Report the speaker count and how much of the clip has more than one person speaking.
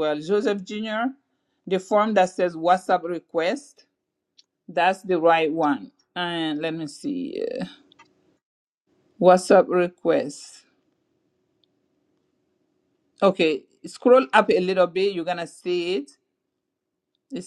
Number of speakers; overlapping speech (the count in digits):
1, no overlap